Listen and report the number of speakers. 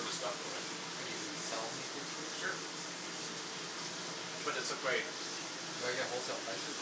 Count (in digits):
2